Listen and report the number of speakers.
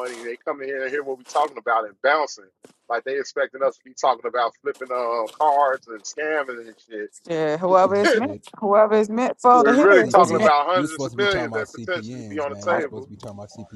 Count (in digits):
3